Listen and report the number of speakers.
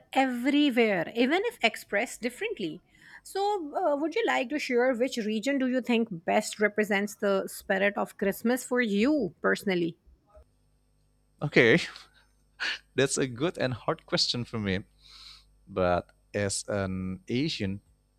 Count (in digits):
2